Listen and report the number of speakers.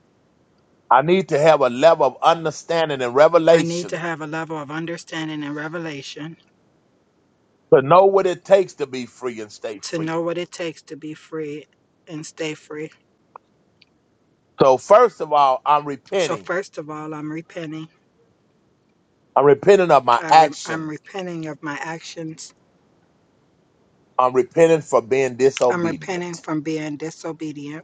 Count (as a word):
two